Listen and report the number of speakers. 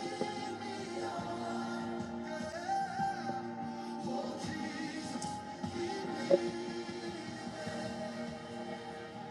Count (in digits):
0